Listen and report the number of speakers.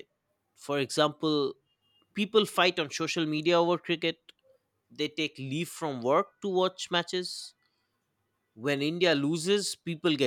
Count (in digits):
1